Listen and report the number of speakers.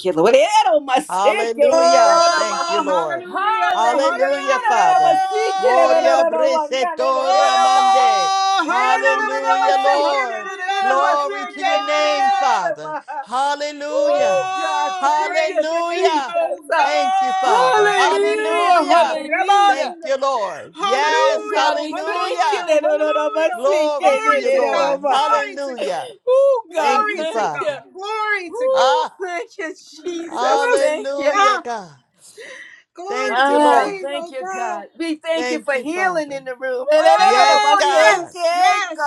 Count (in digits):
3